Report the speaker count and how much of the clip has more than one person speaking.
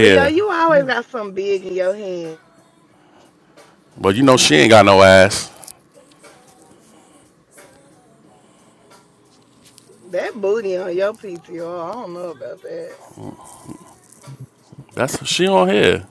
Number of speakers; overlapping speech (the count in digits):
2, about 2%